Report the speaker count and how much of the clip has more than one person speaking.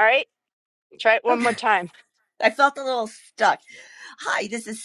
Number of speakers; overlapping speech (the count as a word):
two, about 5%